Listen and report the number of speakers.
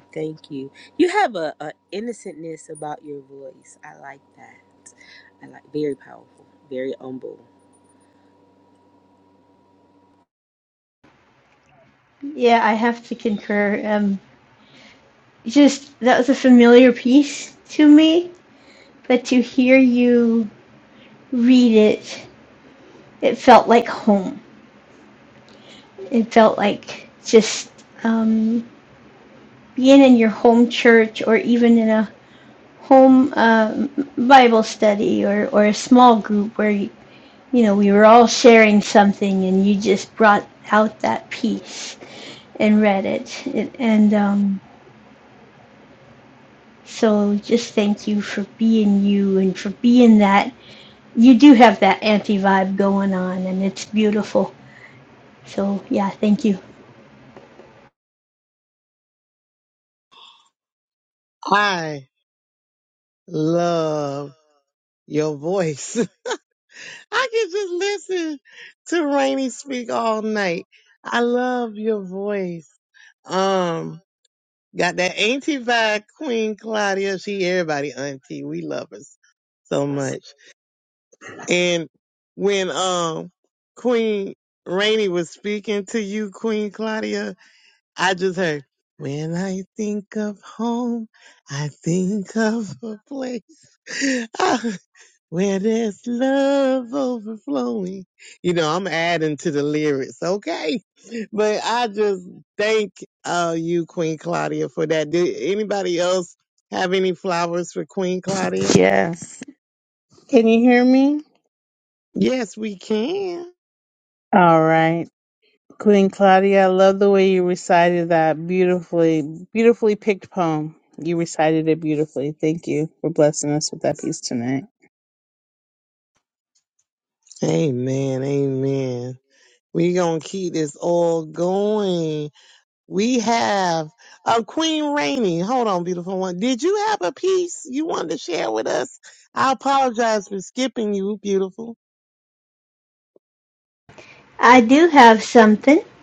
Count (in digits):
4